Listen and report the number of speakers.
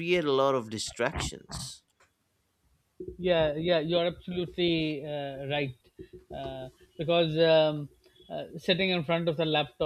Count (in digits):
2